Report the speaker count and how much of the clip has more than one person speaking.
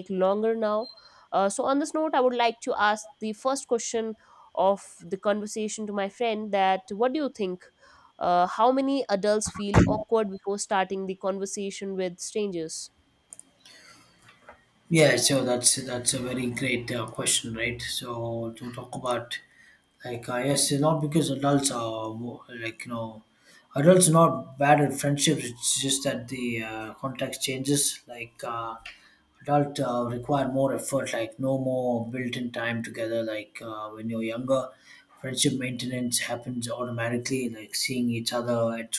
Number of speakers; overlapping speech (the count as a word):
two, no overlap